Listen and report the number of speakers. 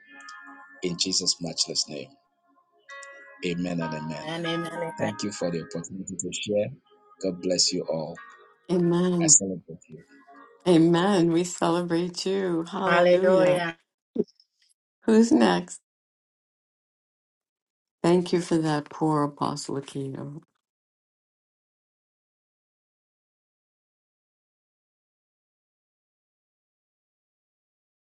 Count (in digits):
3